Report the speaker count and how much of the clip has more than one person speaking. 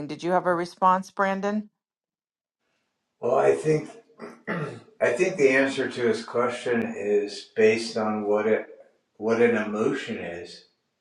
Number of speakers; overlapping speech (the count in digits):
2, no overlap